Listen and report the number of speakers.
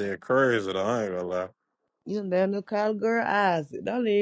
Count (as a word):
two